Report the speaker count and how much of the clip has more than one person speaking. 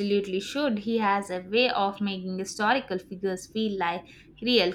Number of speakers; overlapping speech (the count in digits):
1, no overlap